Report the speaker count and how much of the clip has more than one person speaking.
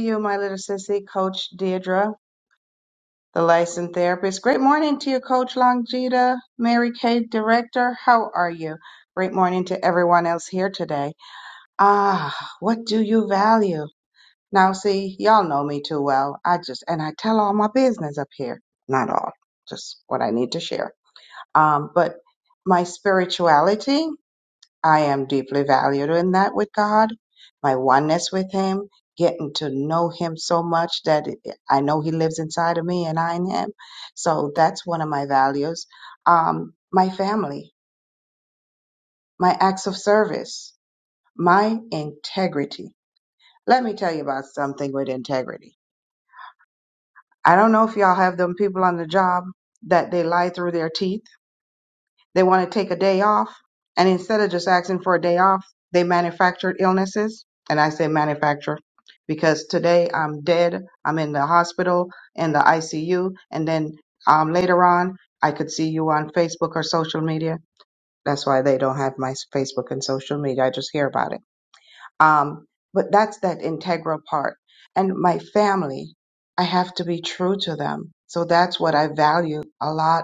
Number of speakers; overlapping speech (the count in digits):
1, no overlap